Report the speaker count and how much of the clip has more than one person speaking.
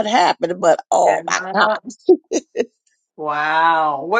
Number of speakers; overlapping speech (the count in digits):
2, about 6%